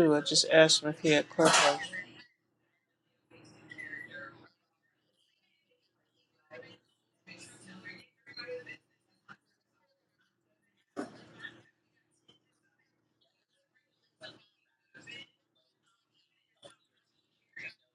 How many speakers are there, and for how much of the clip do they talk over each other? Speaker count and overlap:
1, no overlap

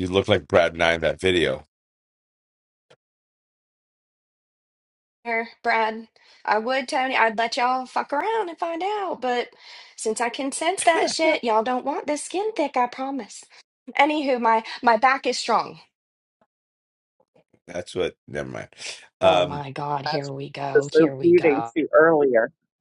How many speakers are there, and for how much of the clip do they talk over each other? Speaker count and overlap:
3, about 6%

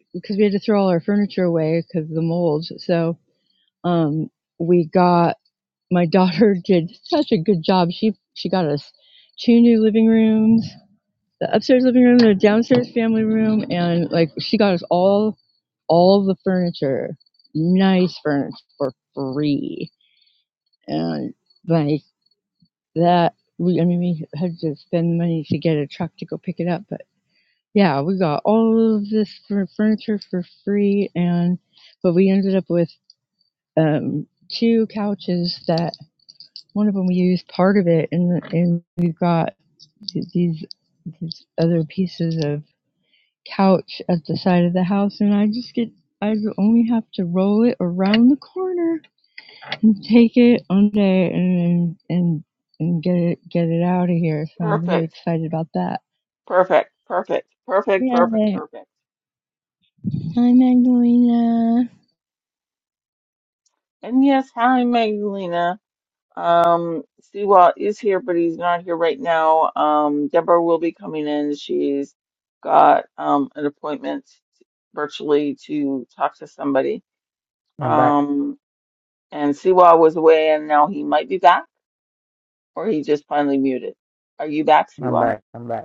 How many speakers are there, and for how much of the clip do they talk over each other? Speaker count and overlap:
3, about 2%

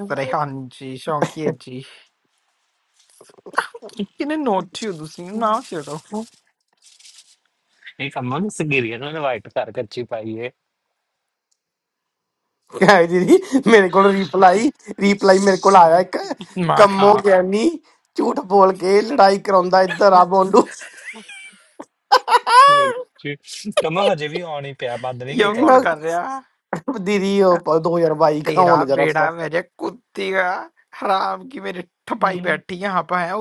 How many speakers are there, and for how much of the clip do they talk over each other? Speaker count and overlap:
3, about 7%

